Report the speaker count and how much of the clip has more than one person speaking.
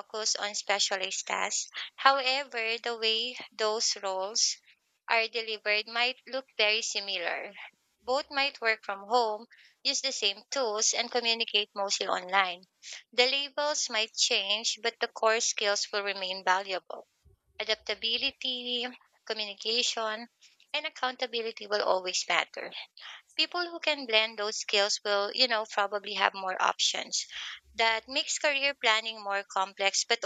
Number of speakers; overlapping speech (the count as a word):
one, no overlap